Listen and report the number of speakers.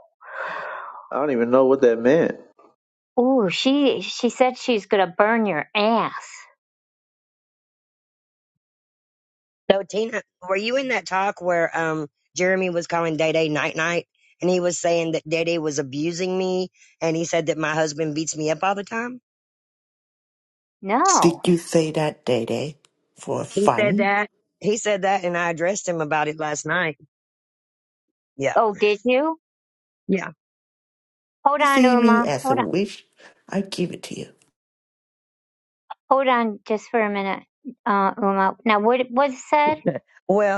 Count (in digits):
4